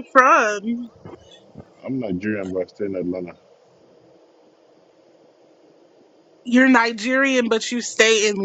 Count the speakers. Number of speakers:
2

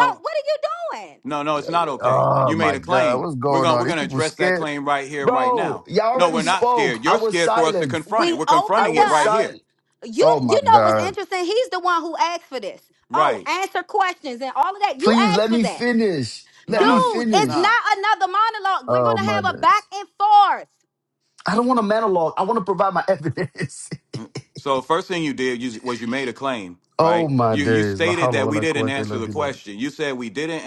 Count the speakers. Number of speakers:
3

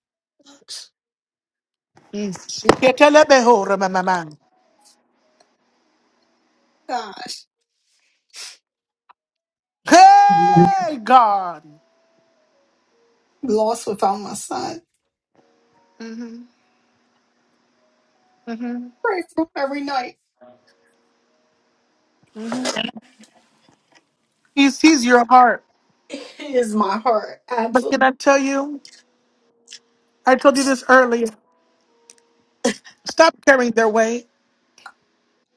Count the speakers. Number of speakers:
2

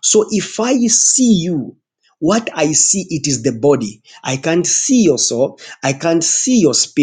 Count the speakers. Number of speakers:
1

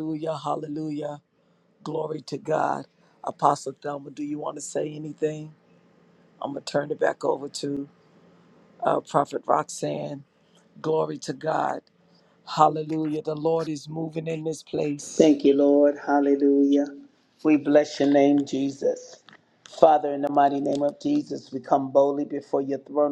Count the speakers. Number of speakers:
2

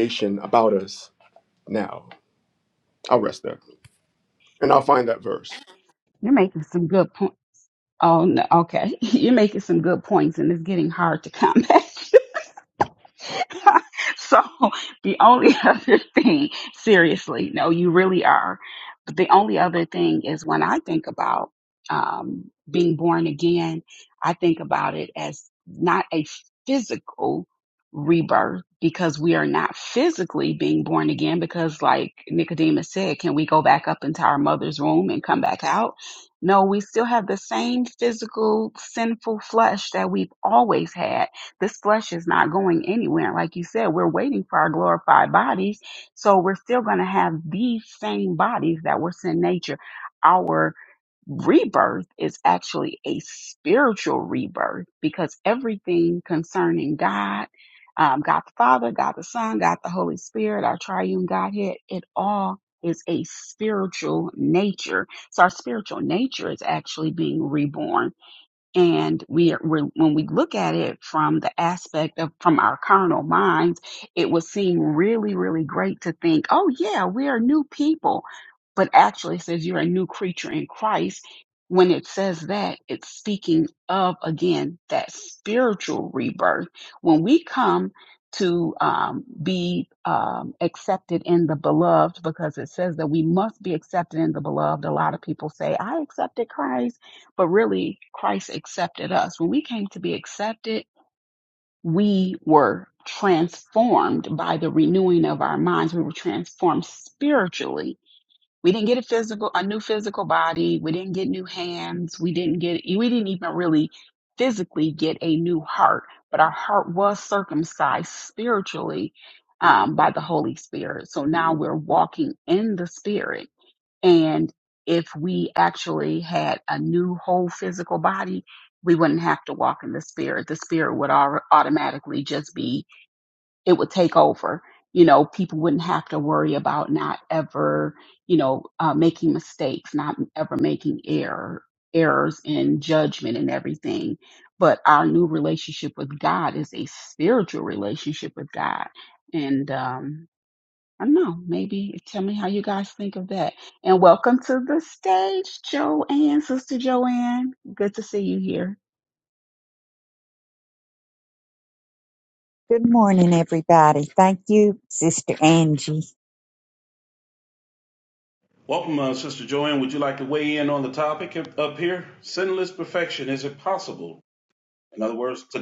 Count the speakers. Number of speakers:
4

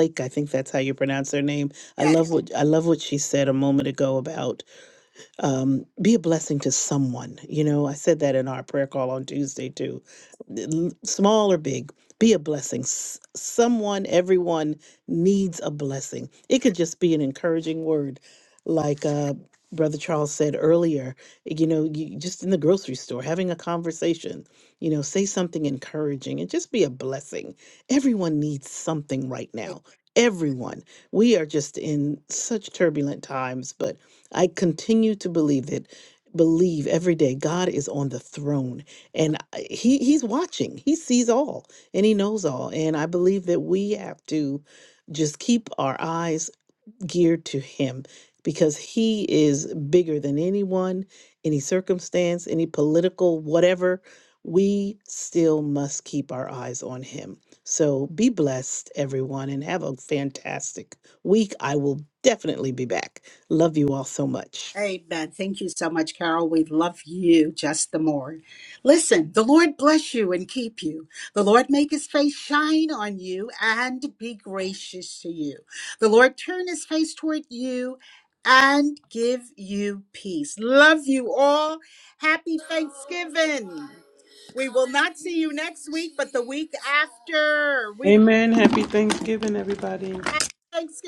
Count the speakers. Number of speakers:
3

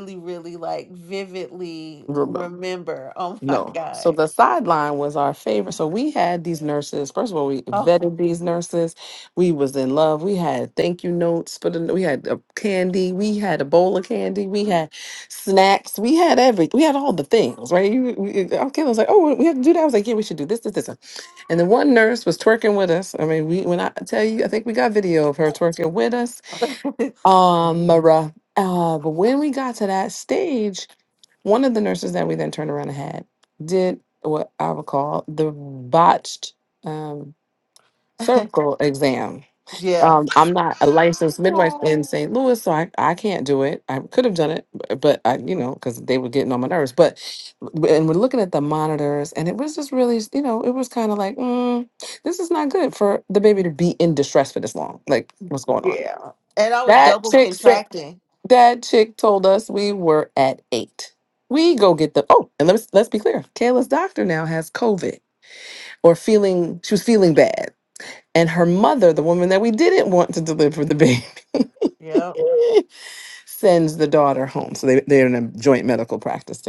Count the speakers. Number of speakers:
2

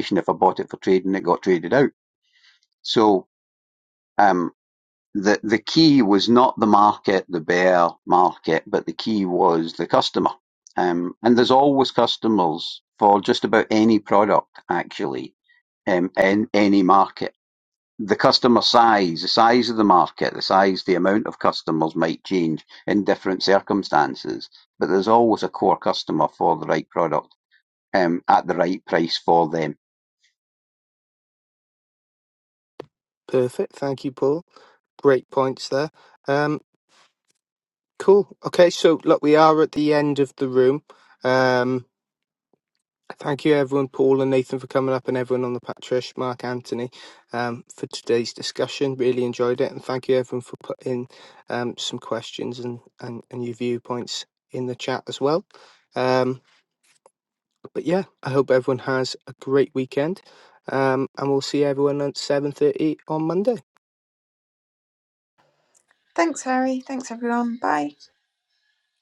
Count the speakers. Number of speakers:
3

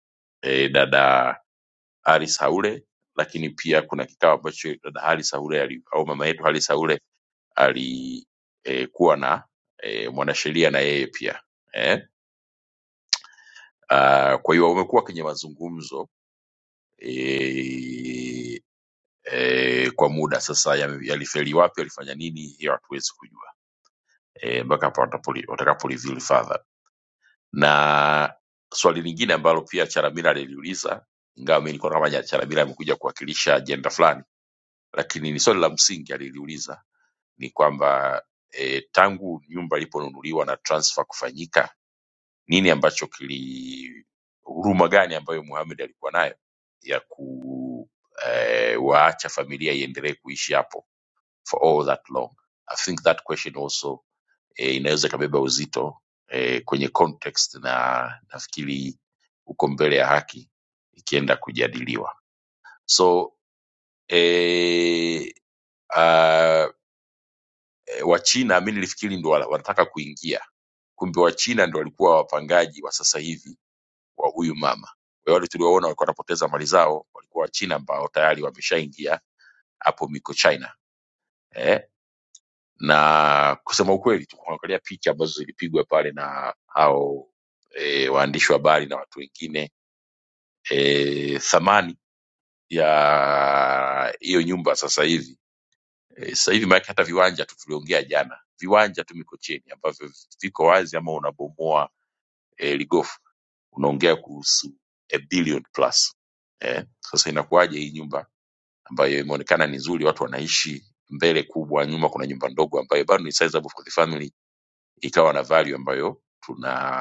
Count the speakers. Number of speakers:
1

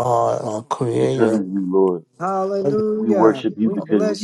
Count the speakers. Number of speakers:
3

